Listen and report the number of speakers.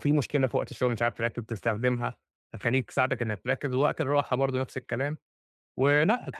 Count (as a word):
one